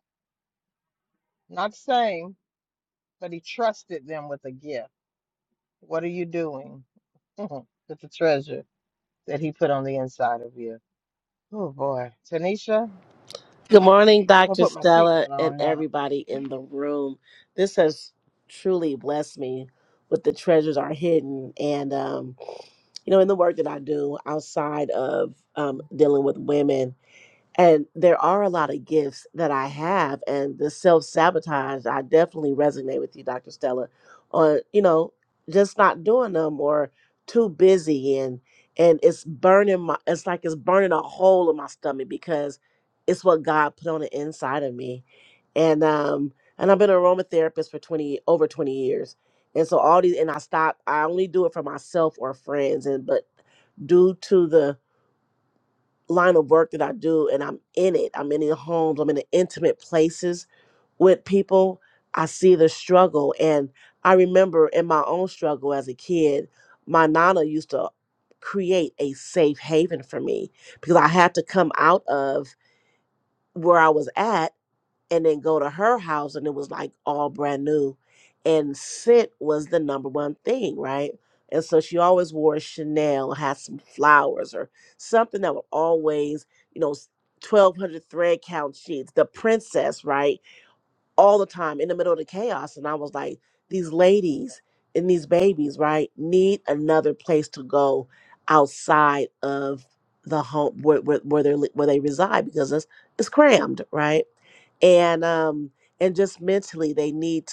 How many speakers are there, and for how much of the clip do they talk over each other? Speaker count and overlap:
two, about 1%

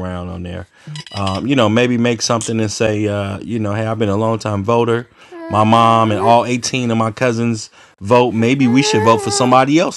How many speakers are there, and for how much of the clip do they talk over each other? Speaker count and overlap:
one, no overlap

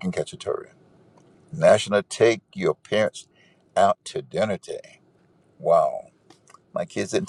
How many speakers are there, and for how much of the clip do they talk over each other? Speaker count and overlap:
one, no overlap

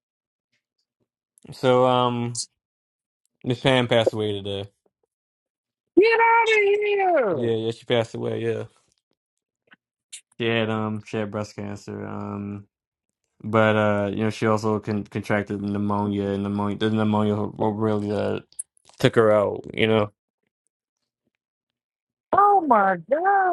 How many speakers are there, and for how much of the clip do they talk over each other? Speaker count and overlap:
two, about 1%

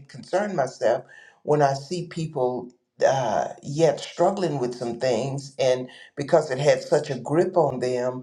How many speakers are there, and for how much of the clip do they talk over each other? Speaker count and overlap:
one, no overlap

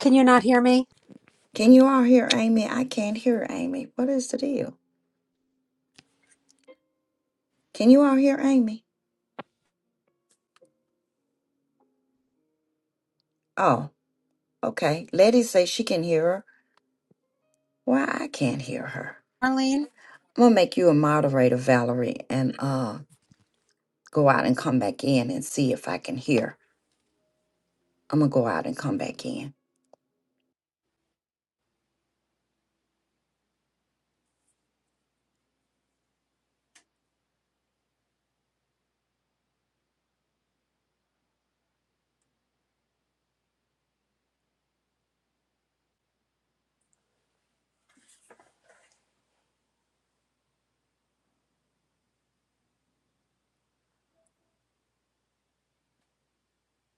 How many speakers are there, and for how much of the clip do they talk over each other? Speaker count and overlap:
two, no overlap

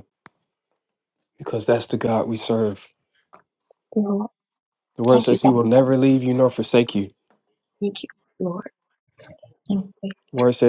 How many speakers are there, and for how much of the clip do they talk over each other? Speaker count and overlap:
two, about 5%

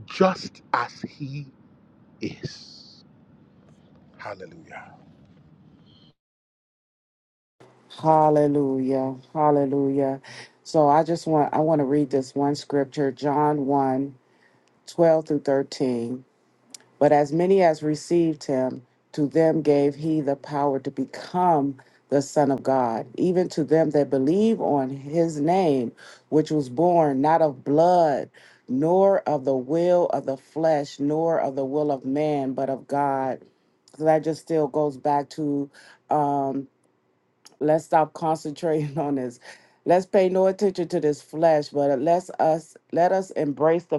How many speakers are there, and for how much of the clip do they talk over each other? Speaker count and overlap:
two, no overlap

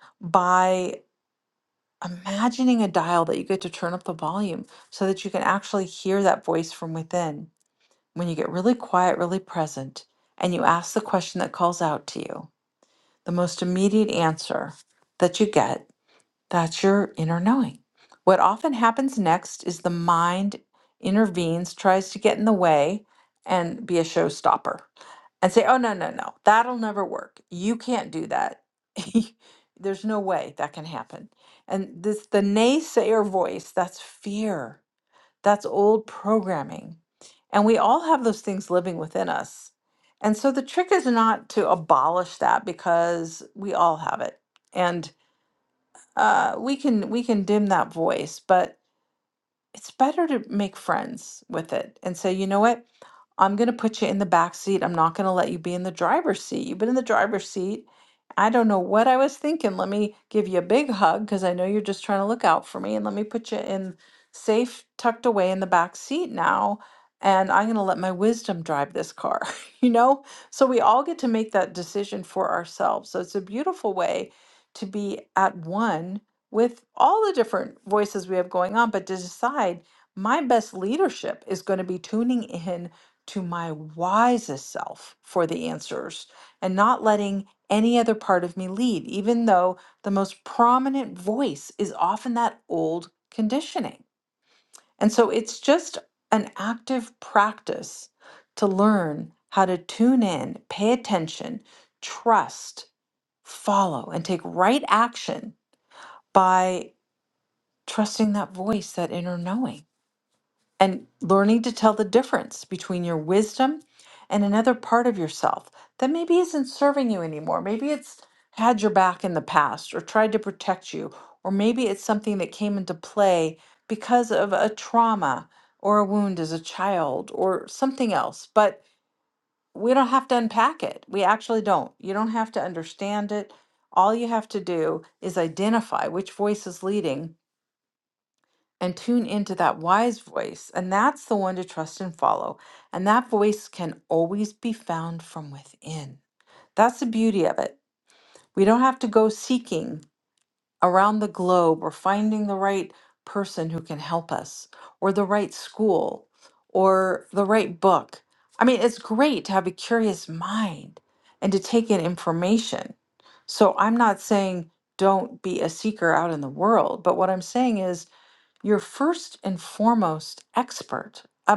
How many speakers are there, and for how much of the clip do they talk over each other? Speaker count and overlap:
one, no overlap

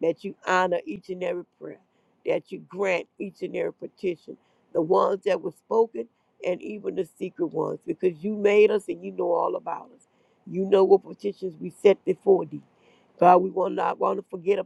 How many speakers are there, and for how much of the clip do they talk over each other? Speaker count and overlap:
one, no overlap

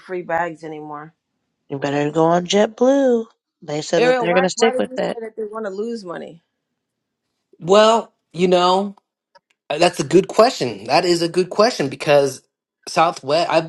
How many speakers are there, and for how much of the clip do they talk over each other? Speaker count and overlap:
three, about 9%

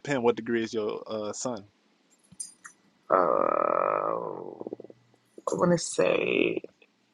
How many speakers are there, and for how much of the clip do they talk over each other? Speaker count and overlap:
two, no overlap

